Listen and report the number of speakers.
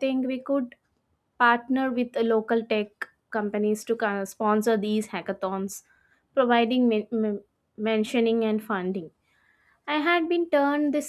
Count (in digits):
1